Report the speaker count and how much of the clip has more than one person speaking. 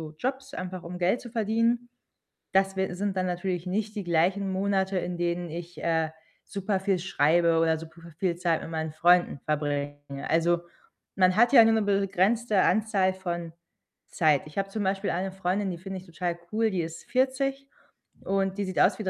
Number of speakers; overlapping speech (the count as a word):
one, no overlap